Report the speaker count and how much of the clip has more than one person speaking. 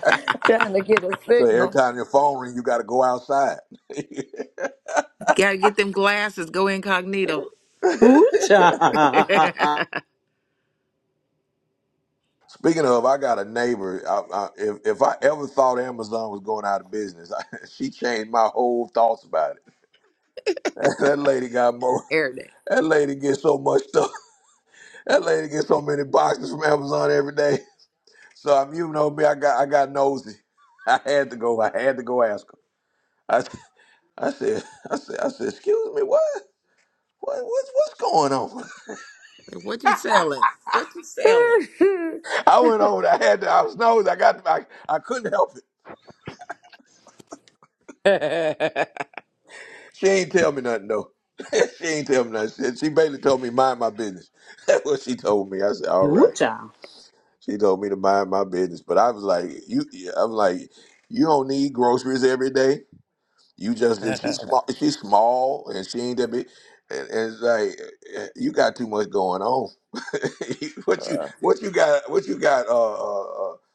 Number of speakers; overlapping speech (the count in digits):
4, about 1%